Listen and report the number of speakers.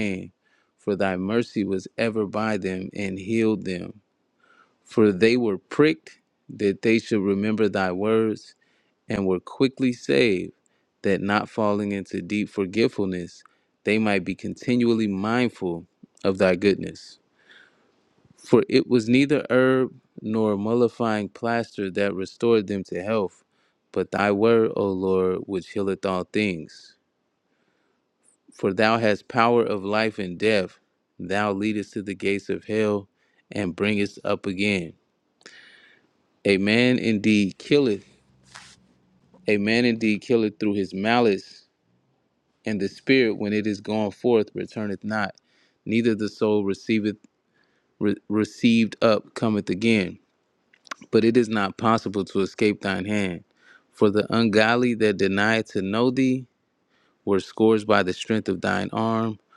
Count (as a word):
one